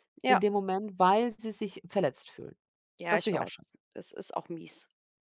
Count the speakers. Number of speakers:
2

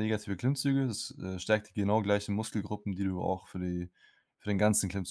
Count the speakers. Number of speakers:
1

